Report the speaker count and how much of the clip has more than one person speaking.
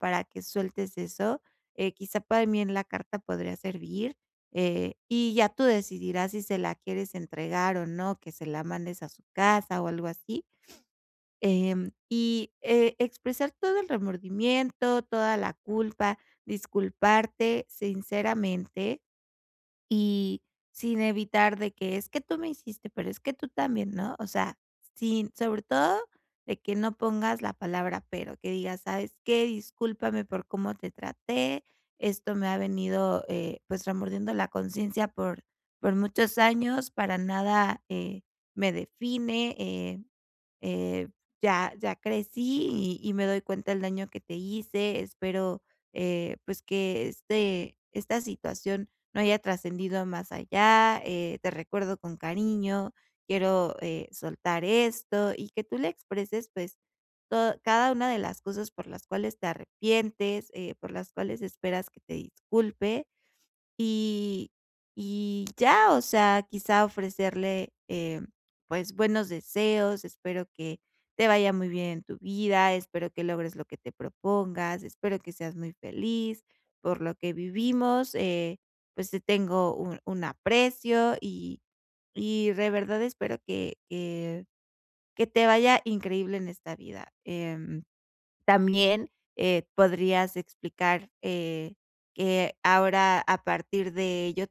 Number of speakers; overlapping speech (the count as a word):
one, no overlap